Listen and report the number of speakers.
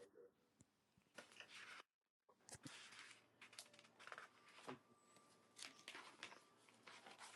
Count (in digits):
0